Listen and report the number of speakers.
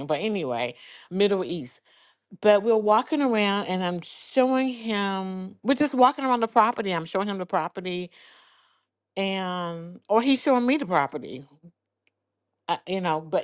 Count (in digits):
1